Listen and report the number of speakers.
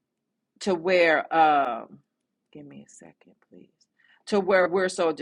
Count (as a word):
one